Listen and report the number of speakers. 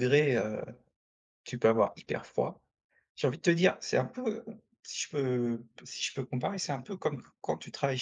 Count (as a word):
one